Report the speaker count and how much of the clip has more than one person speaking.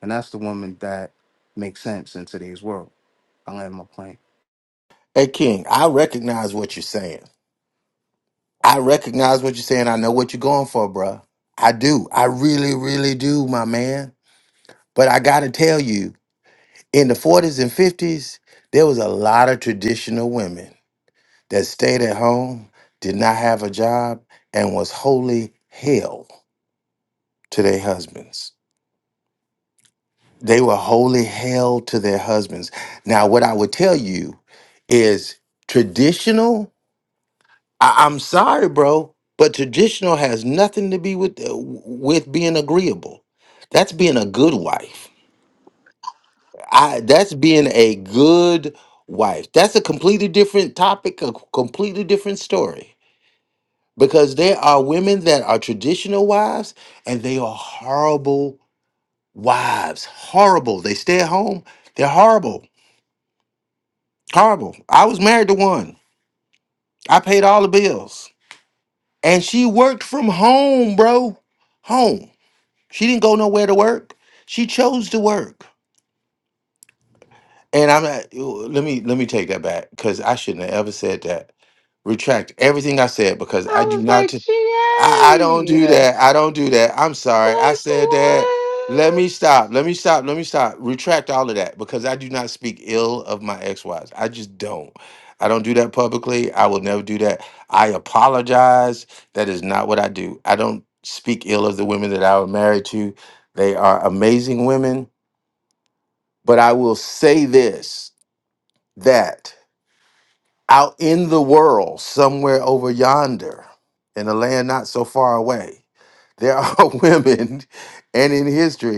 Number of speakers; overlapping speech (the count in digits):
3, about 2%